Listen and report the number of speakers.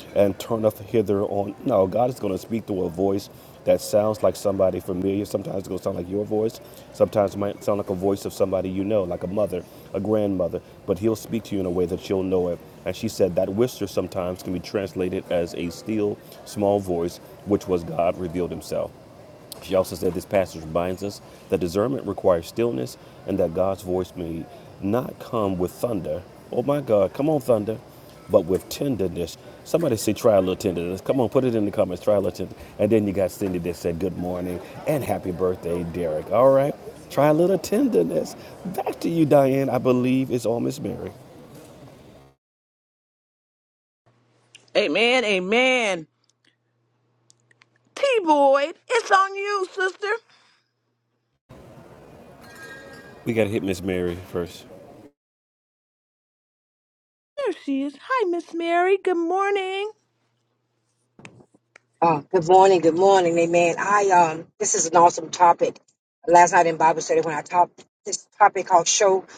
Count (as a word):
three